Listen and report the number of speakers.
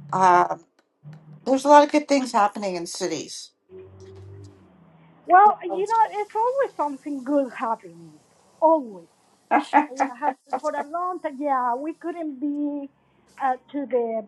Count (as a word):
two